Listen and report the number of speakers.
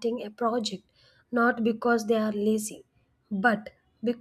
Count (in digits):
1